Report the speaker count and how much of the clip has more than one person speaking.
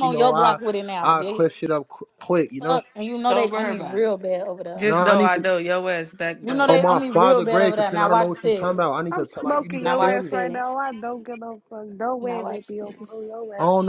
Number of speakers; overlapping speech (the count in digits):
4, about 56%